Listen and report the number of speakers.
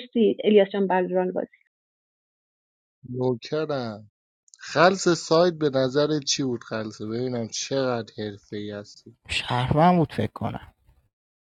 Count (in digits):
3